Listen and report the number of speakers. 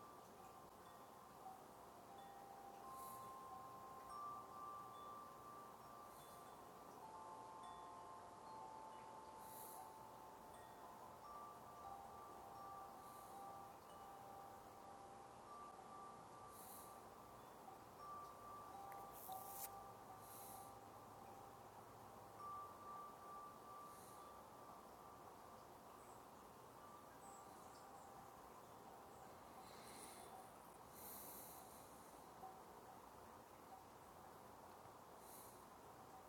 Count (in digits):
0